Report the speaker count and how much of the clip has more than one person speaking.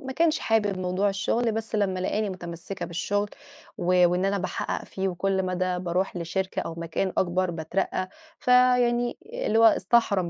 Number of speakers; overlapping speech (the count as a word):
one, no overlap